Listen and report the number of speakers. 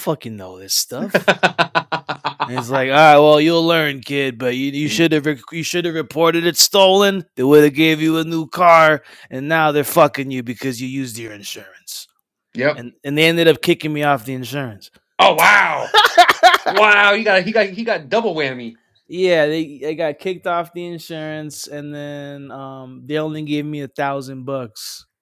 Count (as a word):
two